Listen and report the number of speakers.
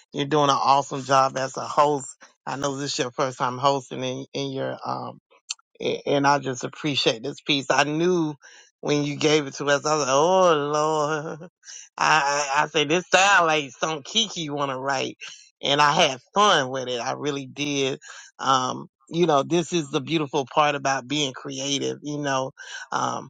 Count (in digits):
1